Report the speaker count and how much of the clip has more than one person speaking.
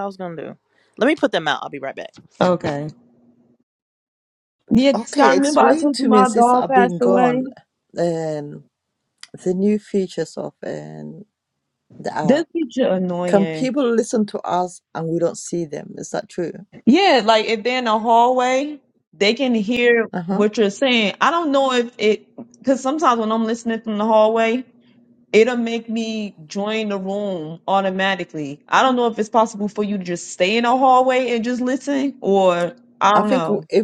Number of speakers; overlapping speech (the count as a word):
three, about 12%